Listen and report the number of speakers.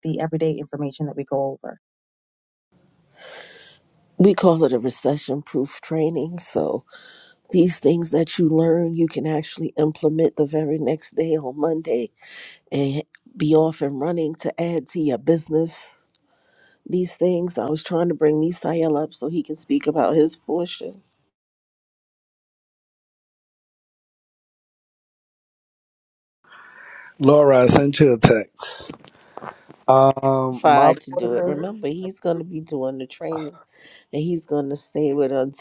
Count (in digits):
3